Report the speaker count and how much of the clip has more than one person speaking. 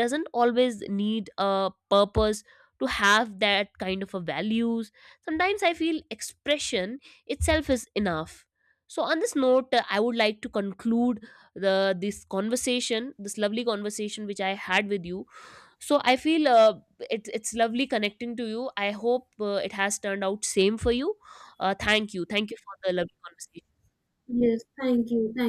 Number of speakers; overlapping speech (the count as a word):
two, no overlap